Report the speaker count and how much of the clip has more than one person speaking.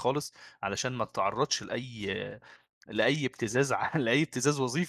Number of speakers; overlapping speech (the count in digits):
1, no overlap